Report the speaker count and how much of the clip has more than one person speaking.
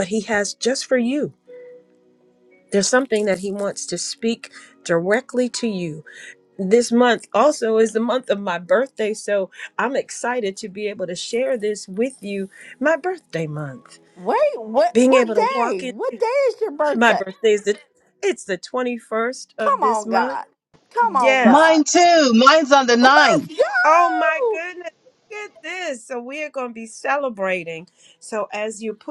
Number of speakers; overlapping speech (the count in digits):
3, about 12%